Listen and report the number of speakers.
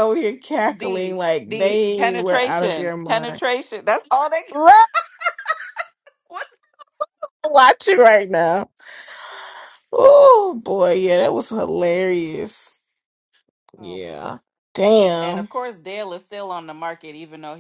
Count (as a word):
two